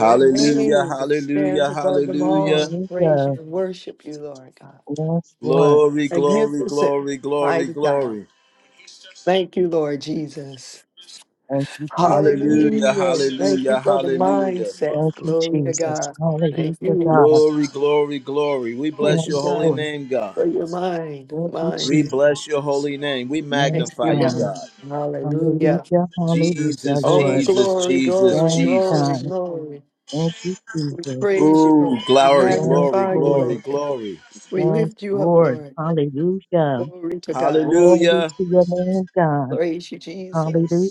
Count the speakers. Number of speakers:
three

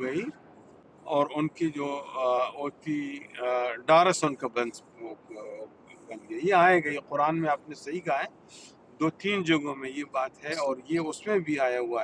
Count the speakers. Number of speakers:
one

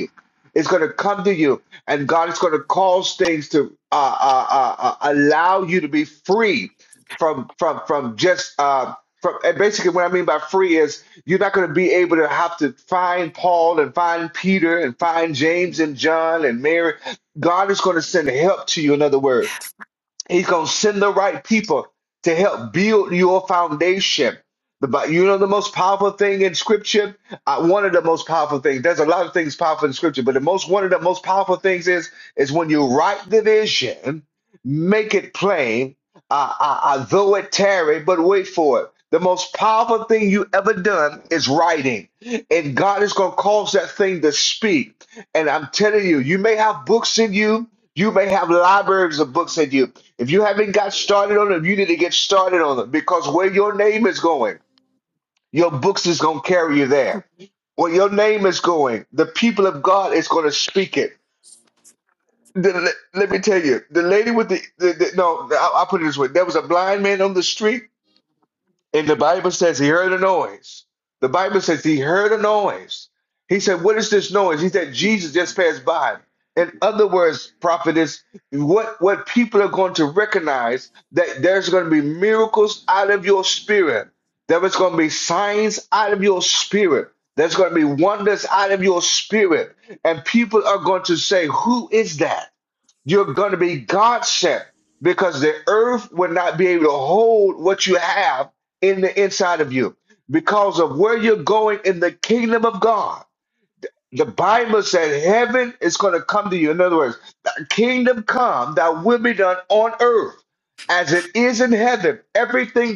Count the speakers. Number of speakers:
one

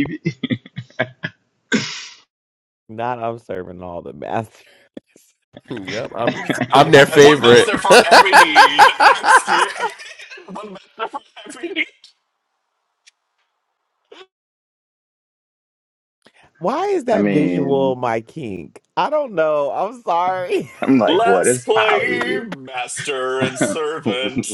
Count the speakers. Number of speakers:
four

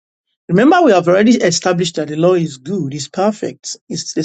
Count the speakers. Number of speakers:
one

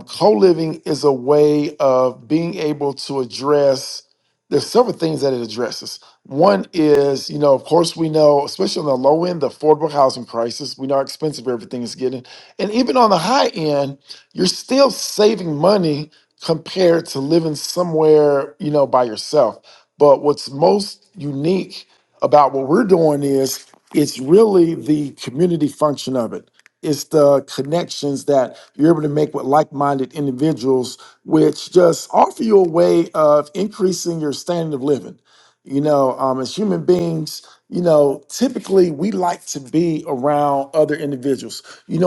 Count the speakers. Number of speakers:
one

